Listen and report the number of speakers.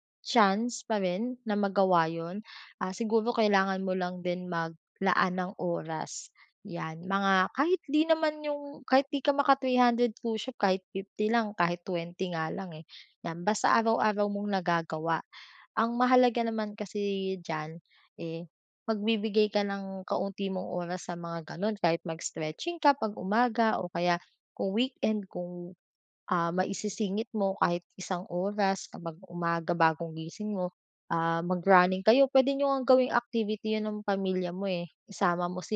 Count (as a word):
one